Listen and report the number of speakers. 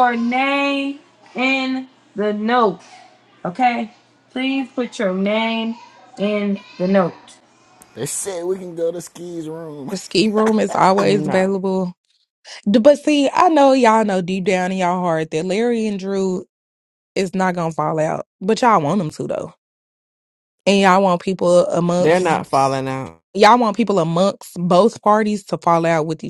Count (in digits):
4